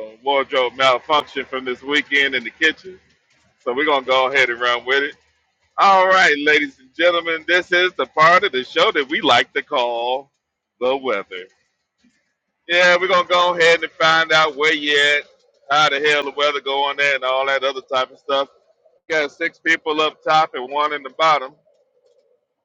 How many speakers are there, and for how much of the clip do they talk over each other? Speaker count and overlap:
1, no overlap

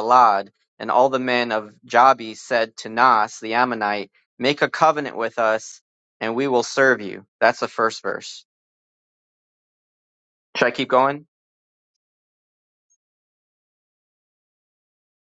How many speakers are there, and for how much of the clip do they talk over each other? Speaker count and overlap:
1, no overlap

